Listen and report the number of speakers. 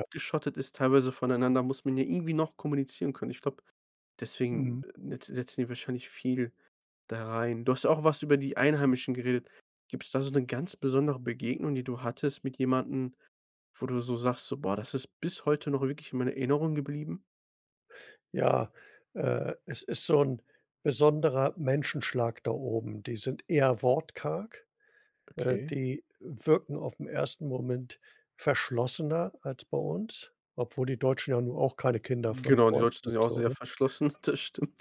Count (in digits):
2